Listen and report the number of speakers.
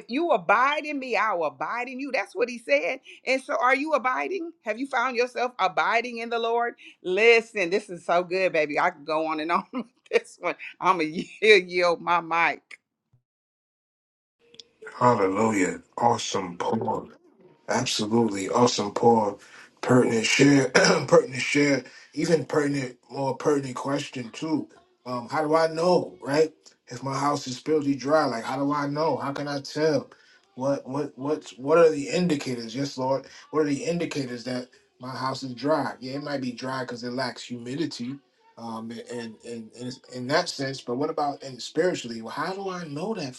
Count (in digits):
2